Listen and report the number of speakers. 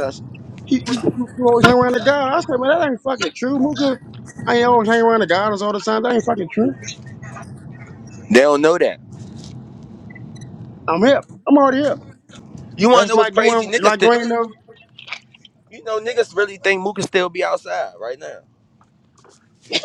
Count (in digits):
2